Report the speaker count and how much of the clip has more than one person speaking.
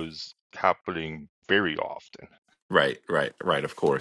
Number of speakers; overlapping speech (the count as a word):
two, no overlap